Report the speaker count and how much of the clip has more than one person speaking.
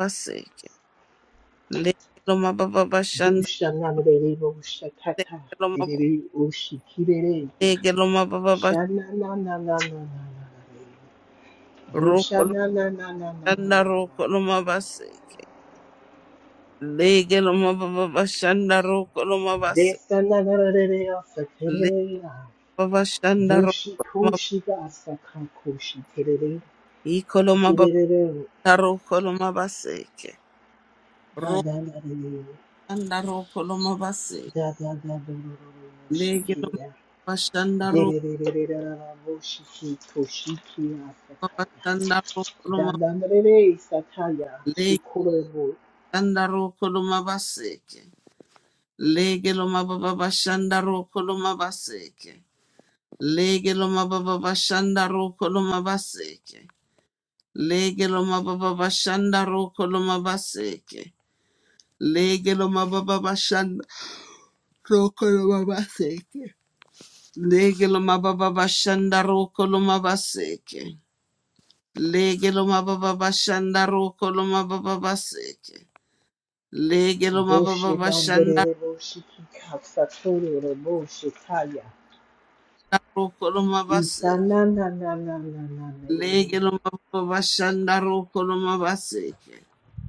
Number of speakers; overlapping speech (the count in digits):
2, about 8%